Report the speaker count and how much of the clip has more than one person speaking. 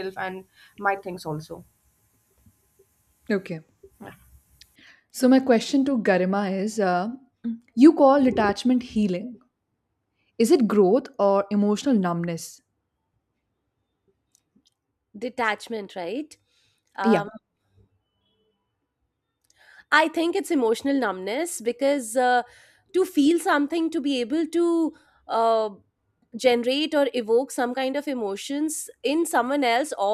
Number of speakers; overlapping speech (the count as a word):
three, about 1%